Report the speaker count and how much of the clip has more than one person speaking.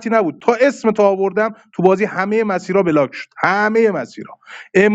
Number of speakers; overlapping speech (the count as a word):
one, no overlap